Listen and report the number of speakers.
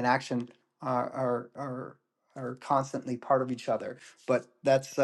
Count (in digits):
1